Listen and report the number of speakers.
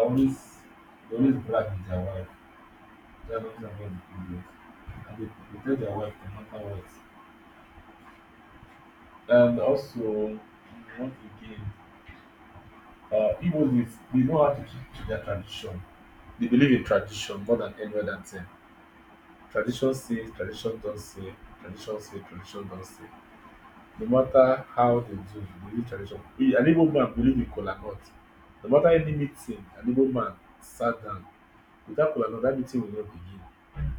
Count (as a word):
one